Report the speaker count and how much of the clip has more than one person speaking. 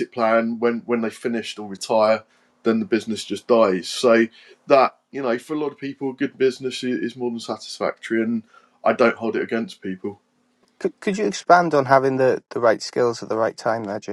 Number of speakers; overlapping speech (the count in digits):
2, no overlap